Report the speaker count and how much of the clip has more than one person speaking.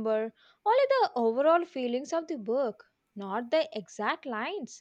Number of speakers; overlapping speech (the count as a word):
one, no overlap